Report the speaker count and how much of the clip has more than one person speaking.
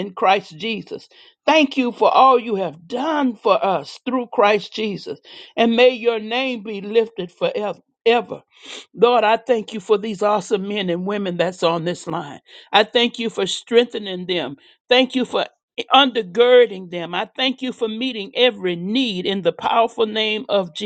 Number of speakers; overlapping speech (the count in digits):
1, no overlap